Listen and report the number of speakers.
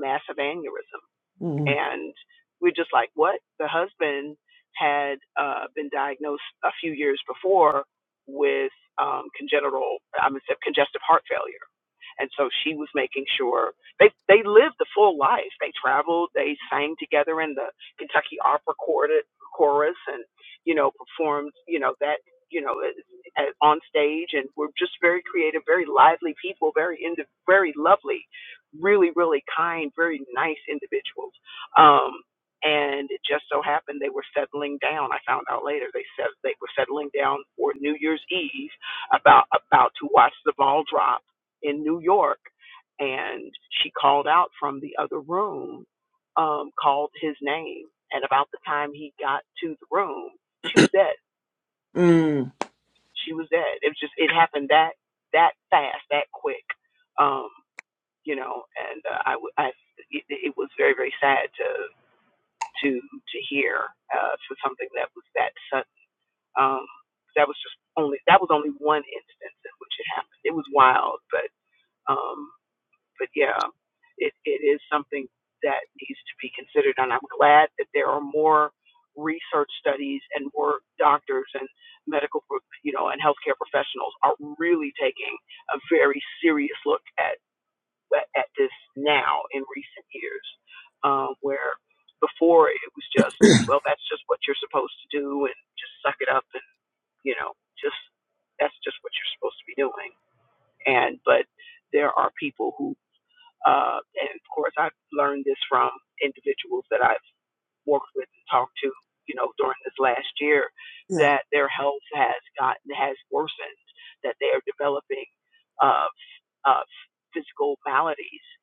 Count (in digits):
2